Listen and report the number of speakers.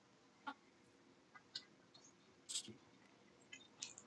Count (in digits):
0